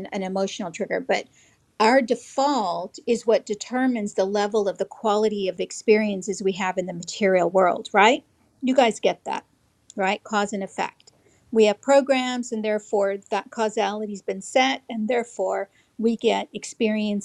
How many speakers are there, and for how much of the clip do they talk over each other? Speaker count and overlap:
1, no overlap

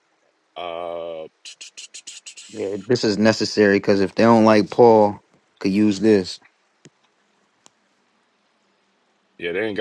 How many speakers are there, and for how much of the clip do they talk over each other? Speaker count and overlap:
2, no overlap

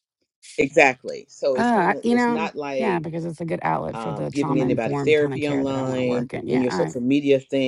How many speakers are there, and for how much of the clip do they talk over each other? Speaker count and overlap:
2, about 58%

